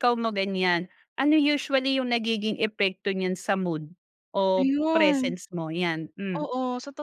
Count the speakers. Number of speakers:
2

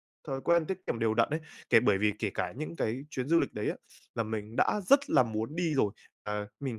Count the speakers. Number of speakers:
1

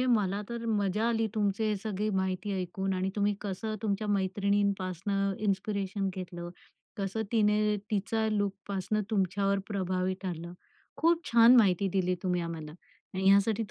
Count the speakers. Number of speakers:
1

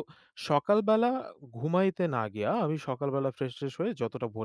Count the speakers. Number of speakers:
1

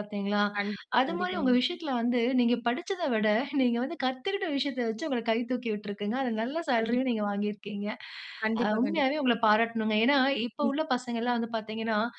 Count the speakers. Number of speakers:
2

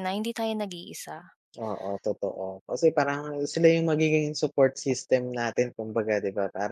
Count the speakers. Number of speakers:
2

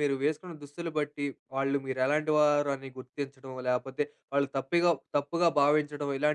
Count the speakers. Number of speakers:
1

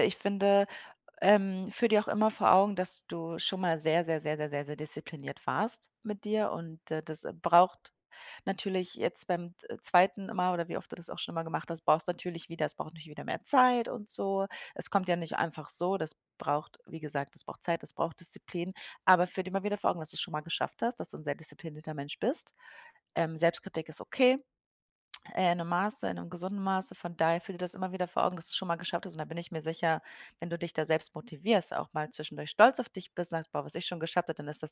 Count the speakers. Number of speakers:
1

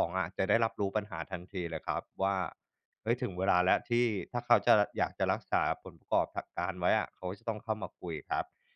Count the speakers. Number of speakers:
1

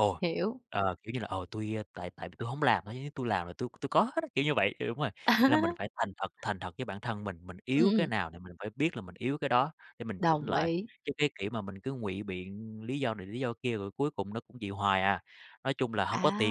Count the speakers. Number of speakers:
2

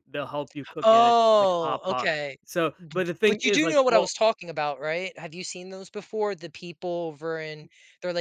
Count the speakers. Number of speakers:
2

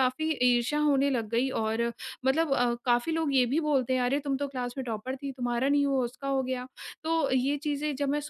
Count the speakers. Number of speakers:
1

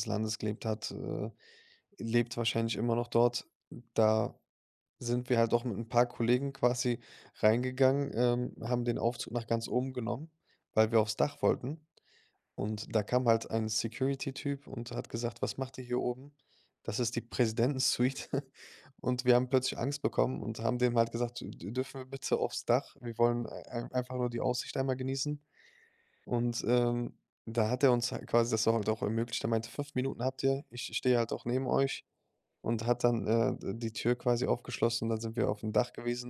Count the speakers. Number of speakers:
1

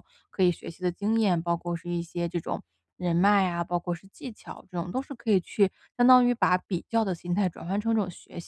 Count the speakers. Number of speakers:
1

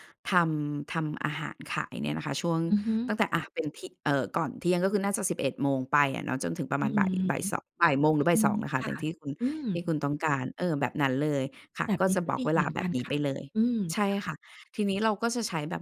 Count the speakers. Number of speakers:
2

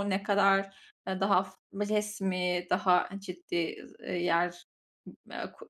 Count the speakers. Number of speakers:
1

